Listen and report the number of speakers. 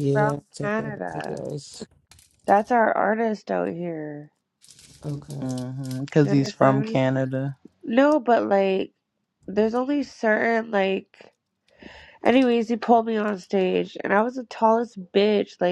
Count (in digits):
3